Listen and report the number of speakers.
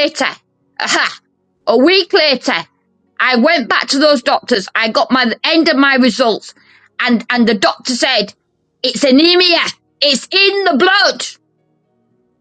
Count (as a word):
one